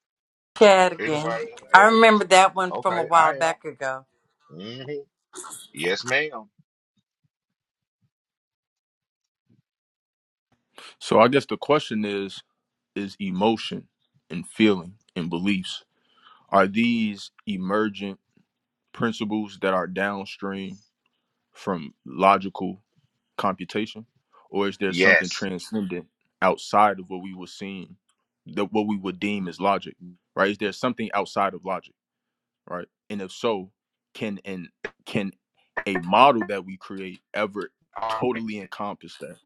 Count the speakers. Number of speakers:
three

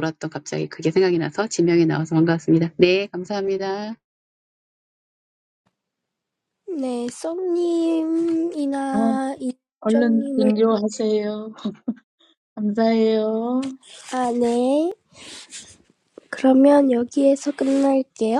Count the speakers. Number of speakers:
three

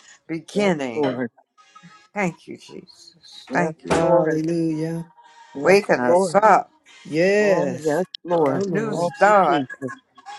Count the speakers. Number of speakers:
three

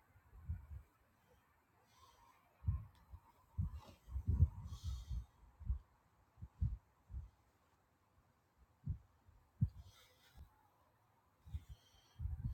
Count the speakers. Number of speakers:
zero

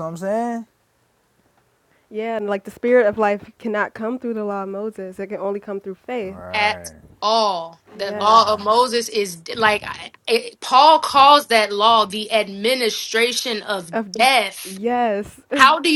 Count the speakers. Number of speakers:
three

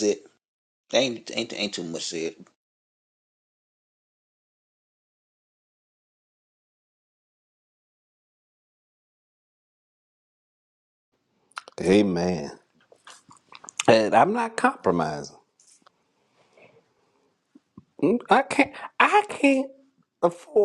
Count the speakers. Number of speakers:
two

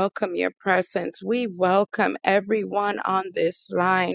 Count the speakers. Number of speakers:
one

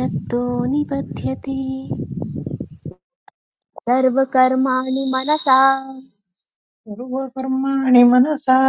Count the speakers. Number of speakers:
three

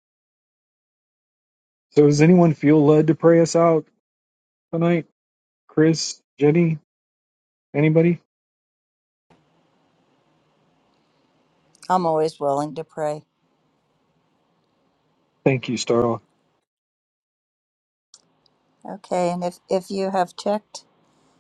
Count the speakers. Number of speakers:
two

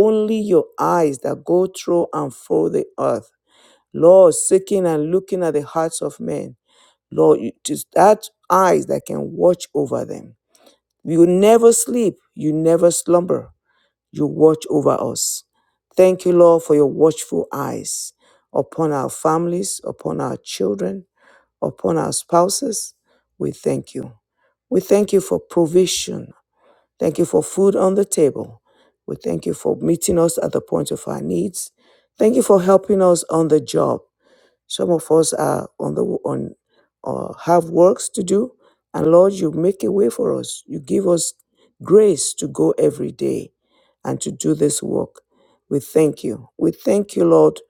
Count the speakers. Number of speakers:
one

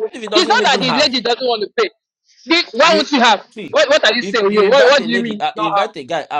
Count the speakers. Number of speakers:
two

